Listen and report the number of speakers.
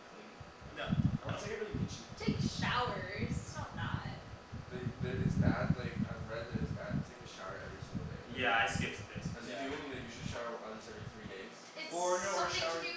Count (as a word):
four